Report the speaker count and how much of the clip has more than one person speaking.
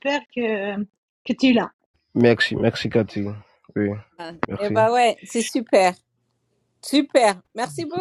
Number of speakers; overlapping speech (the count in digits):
3, about 5%